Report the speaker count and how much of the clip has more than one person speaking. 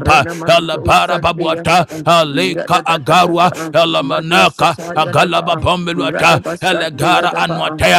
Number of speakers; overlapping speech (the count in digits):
2, about 83%